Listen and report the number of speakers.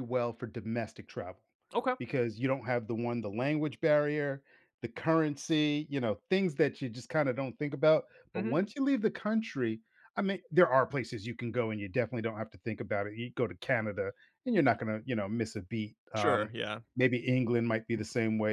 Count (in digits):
2